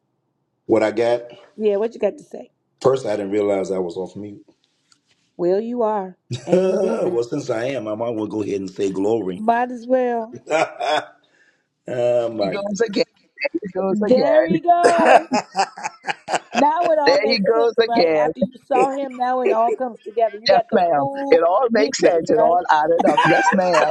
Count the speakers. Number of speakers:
three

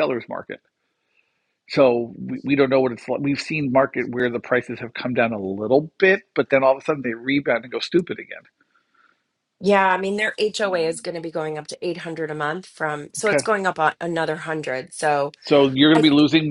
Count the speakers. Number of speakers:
two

